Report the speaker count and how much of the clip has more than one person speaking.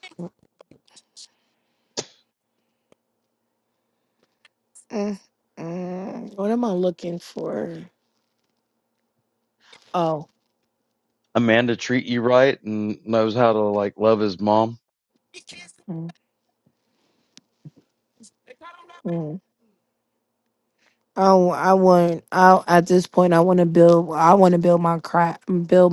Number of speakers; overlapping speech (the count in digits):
2, no overlap